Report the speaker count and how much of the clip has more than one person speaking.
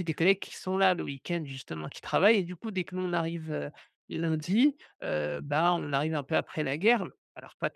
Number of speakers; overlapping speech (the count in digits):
1, no overlap